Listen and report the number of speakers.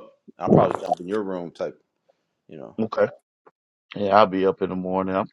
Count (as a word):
two